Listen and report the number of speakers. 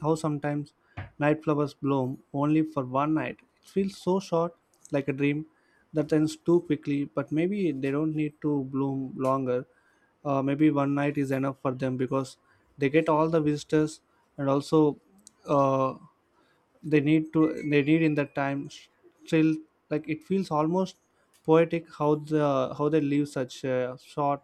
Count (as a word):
one